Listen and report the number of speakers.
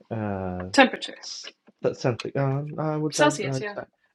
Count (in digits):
2